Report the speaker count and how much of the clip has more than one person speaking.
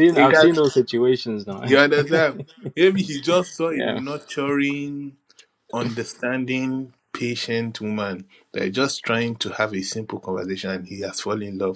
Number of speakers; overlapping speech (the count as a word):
two, about 6%